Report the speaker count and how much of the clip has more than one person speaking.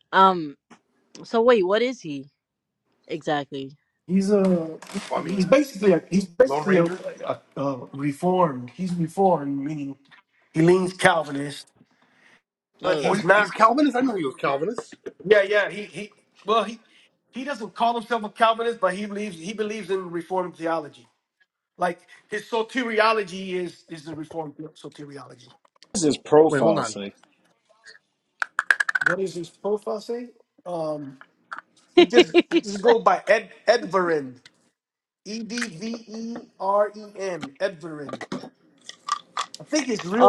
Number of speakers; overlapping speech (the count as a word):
four, about 6%